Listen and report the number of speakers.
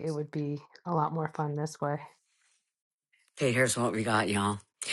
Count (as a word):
two